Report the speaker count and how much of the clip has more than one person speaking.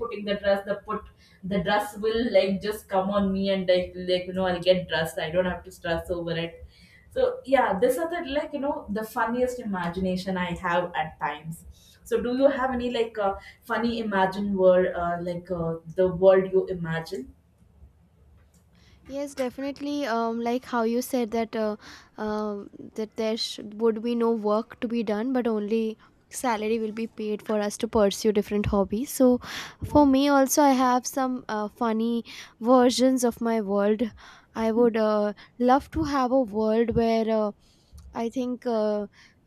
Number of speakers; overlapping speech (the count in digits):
2, no overlap